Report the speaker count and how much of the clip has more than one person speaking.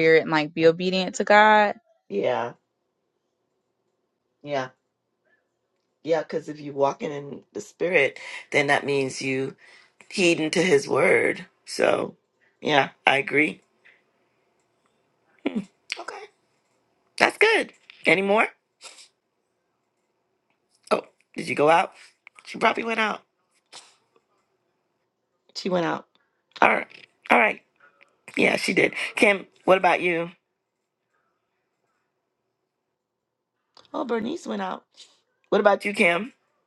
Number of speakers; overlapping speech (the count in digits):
2, no overlap